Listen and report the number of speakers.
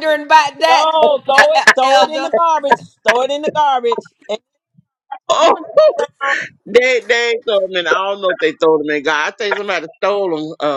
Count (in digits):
3